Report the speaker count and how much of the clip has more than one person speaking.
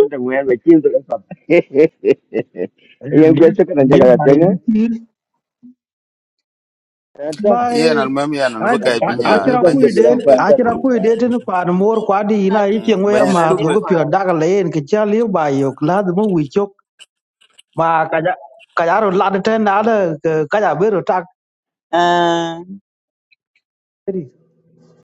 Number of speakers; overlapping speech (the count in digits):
4, about 19%